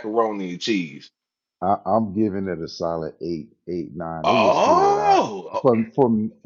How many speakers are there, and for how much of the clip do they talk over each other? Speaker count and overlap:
2, about 15%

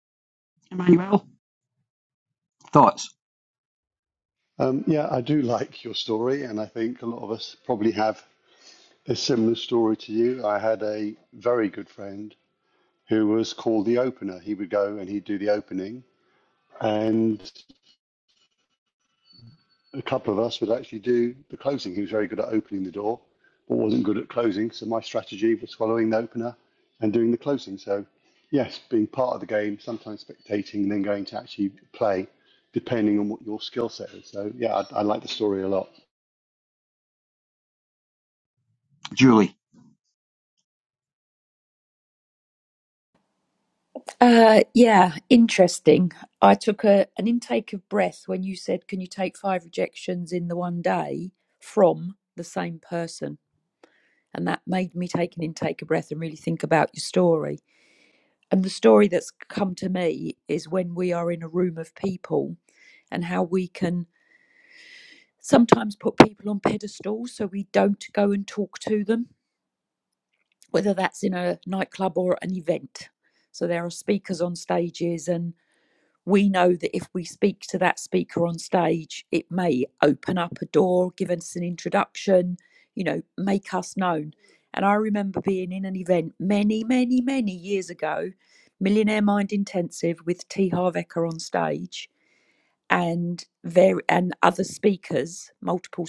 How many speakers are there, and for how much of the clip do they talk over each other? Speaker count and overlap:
3, no overlap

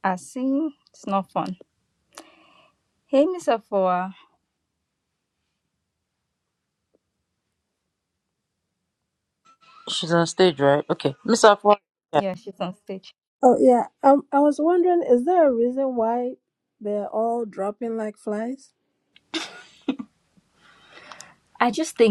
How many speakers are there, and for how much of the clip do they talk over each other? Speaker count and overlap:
3, under 1%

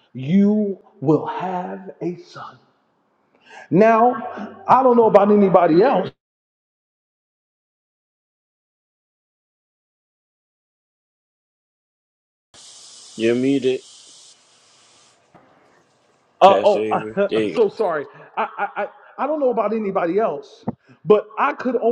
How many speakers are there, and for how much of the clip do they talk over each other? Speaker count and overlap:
2, about 6%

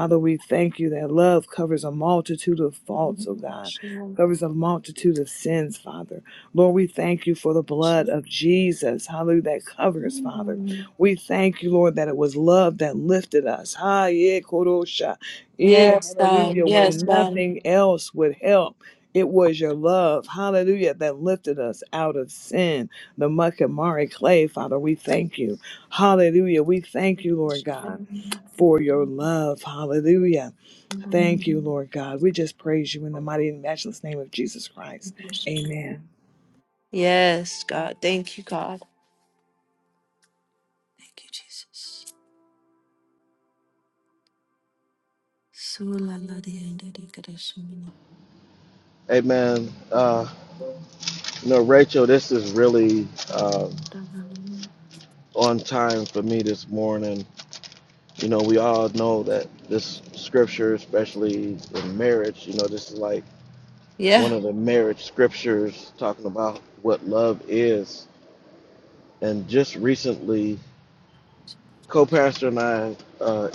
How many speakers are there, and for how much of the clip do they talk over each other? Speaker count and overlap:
3, about 1%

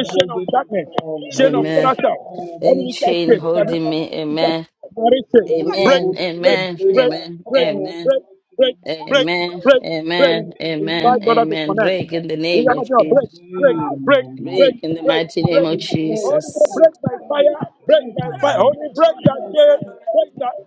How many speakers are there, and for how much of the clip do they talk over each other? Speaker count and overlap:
3, about 79%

